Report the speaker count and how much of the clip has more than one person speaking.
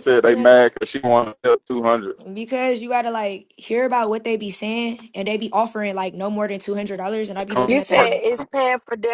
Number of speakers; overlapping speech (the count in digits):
3, about 12%